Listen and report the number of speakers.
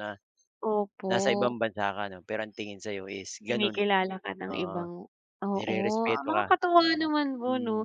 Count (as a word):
two